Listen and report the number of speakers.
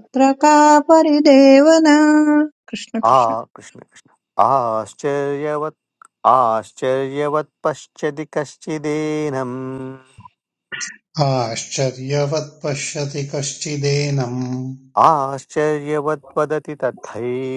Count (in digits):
3